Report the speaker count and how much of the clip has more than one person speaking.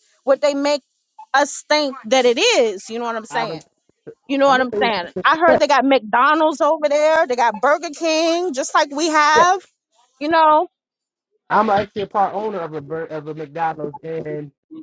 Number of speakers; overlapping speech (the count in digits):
2, about 6%